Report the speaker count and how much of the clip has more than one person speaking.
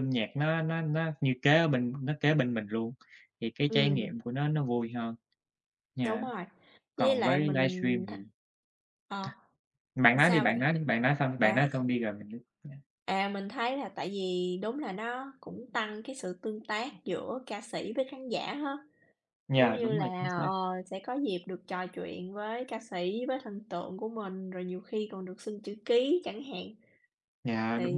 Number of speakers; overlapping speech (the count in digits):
2, about 14%